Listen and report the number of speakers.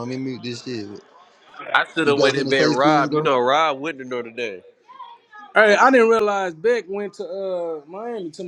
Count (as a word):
three